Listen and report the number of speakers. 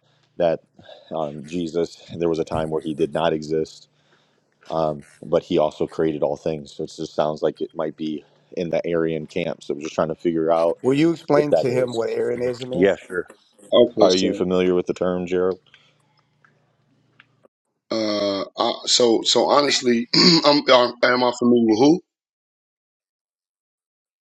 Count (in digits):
3